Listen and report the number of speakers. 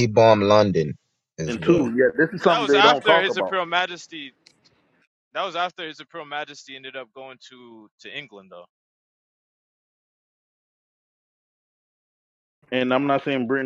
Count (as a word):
three